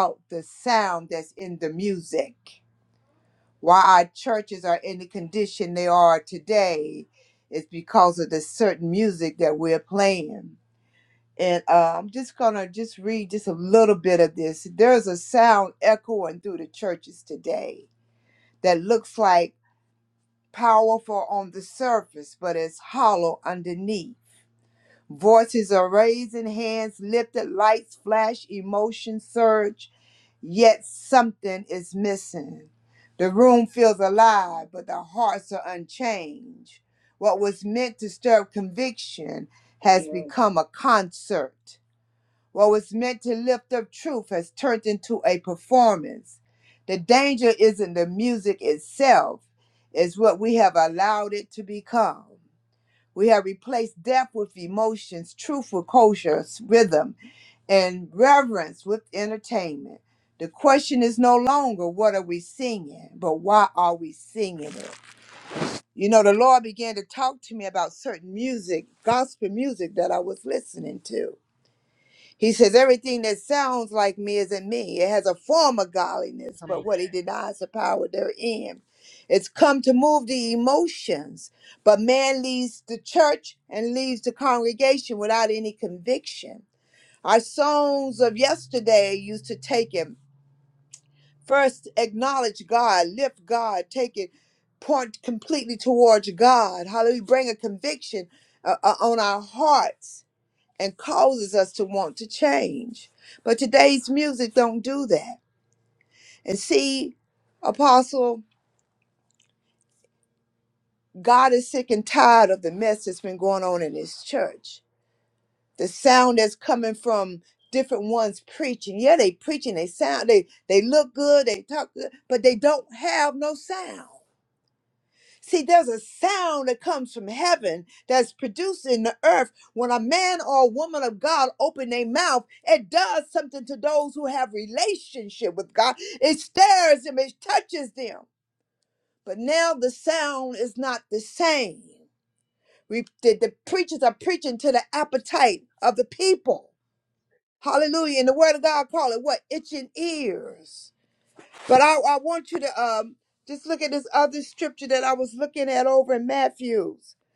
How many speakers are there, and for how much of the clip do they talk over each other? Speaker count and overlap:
one, no overlap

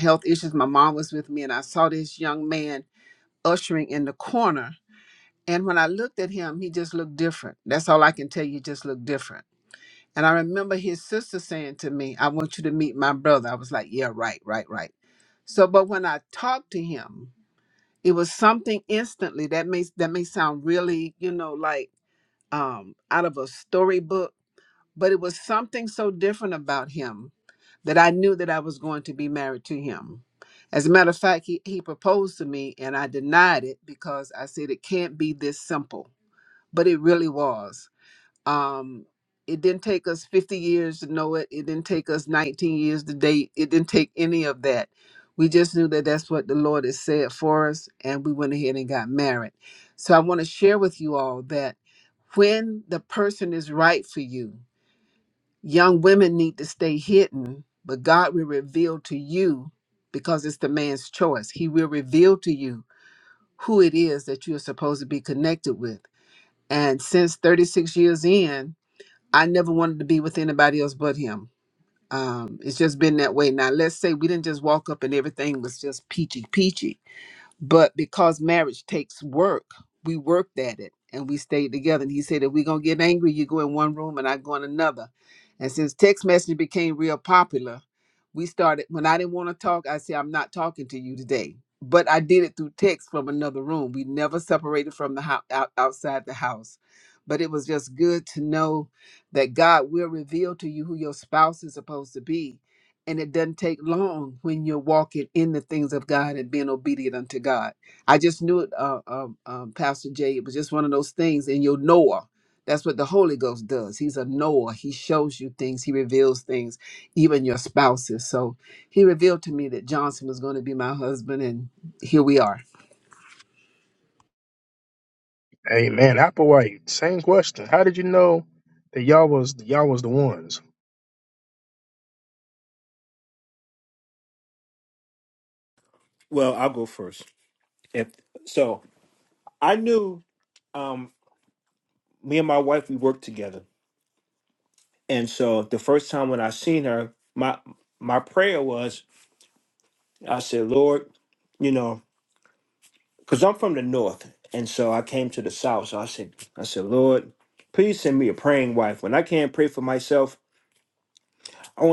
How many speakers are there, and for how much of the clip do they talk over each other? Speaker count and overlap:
three, no overlap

